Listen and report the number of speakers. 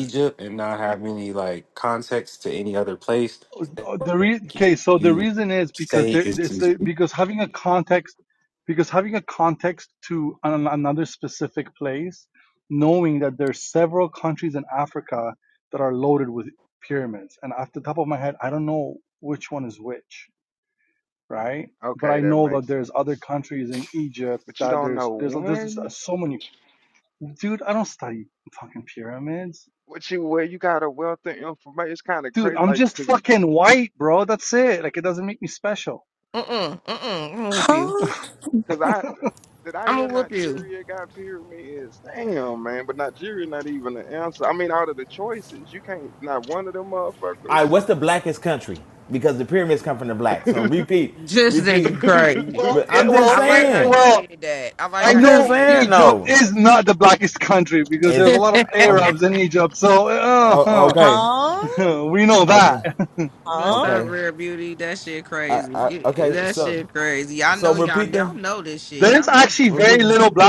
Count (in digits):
6